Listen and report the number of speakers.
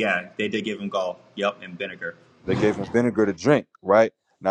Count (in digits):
2